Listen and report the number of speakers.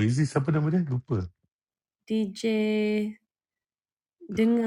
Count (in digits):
2